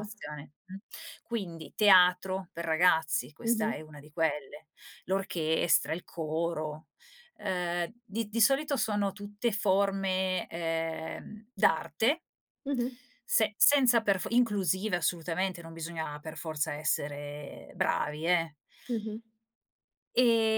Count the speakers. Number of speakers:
two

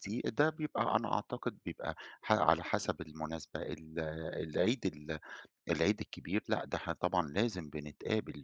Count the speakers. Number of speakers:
one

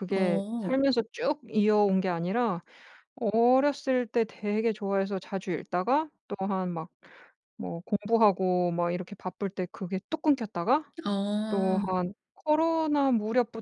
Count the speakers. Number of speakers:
two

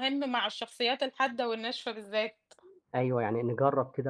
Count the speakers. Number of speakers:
two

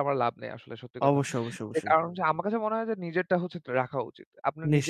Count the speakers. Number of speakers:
two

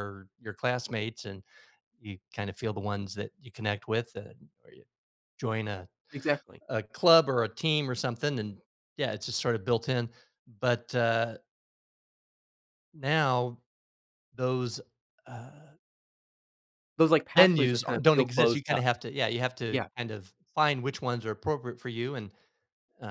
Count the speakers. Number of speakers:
two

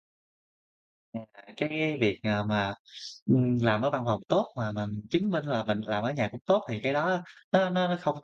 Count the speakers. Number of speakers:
one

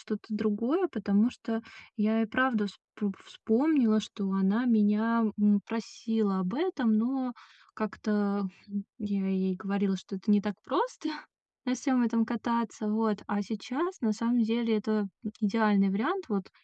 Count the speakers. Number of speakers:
one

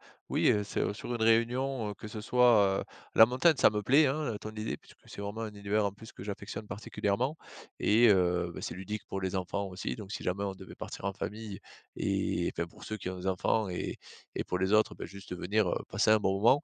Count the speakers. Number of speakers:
one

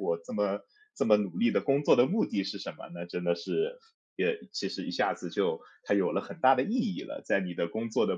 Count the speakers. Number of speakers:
one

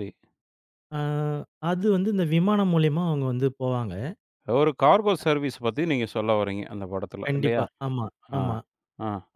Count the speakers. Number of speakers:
two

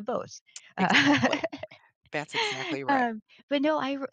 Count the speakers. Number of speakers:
two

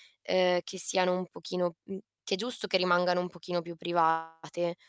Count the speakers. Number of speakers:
one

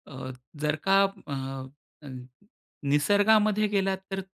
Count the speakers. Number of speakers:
one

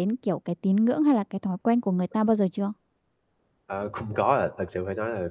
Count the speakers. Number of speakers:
two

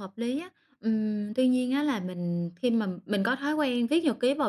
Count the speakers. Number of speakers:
one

